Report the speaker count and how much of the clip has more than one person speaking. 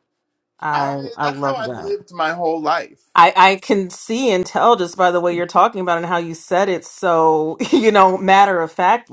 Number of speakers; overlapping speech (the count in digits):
2, about 13%